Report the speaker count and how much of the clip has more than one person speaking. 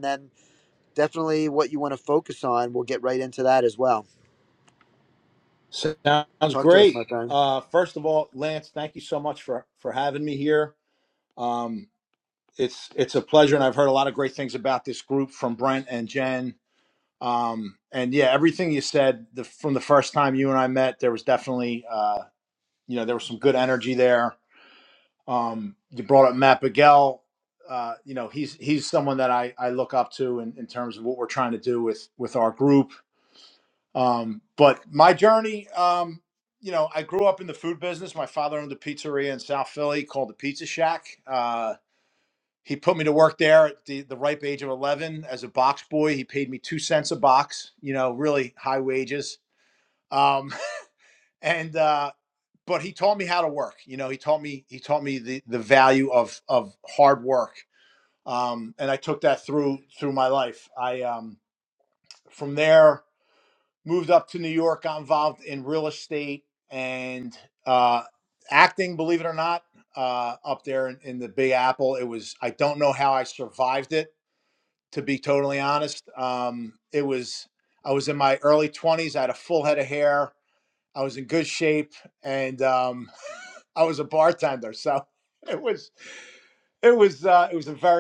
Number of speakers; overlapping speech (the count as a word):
two, about 1%